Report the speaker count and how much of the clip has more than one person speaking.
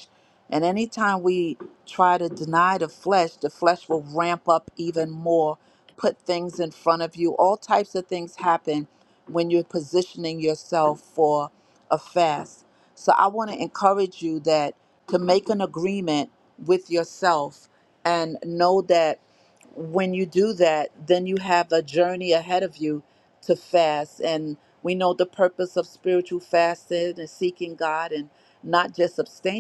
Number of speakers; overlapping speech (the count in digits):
1, no overlap